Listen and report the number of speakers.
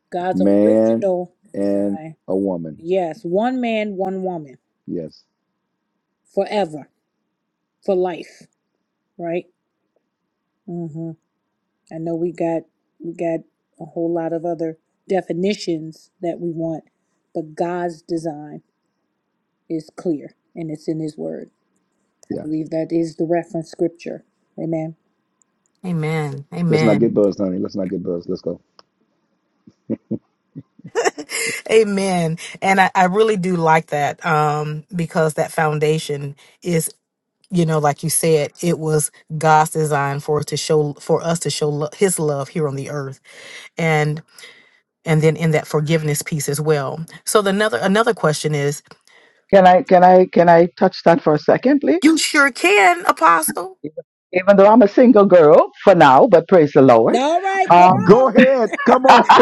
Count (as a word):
four